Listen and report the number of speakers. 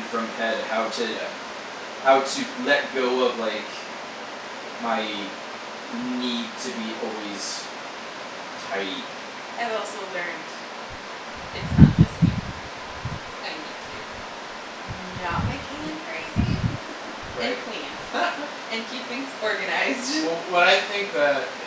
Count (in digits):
3